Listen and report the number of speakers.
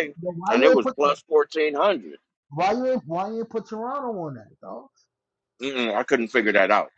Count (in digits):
2